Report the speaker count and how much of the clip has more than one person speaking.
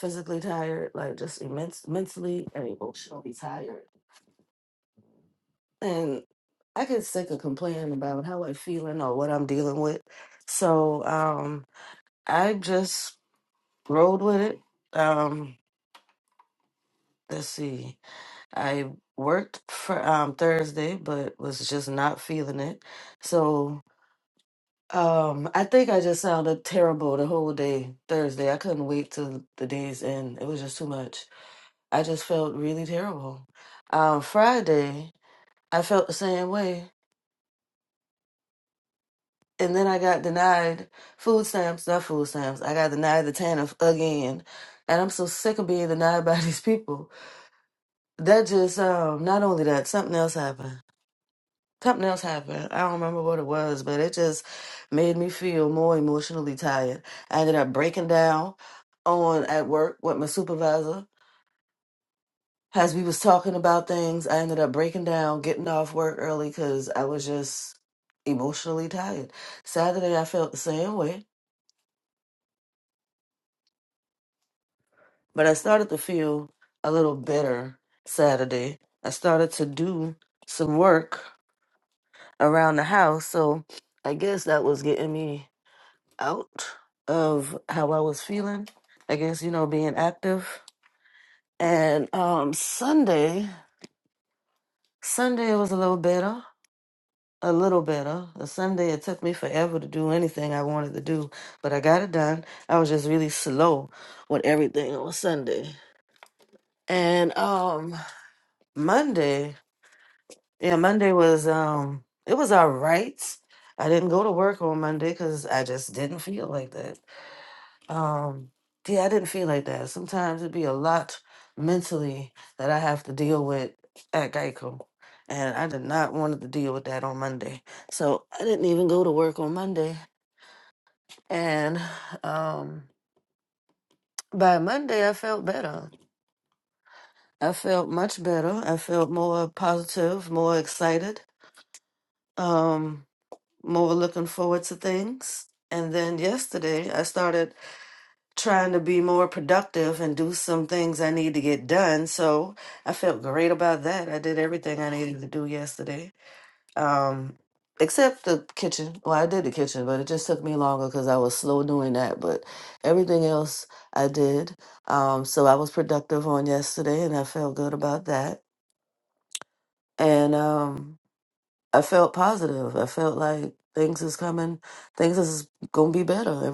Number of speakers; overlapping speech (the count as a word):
one, no overlap